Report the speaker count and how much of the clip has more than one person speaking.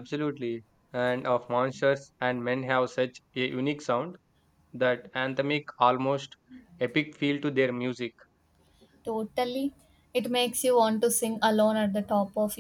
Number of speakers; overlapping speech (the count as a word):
two, no overlap